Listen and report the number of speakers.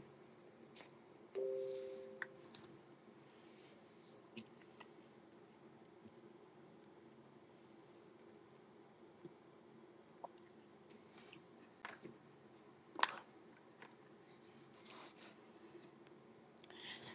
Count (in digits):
0